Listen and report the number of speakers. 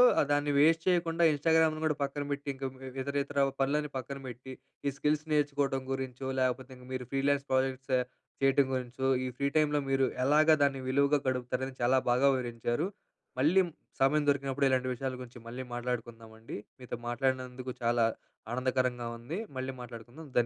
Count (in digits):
1